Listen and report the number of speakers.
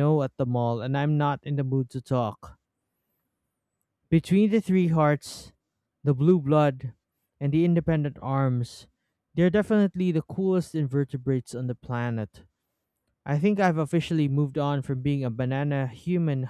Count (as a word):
one